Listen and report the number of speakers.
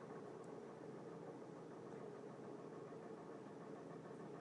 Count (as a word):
zero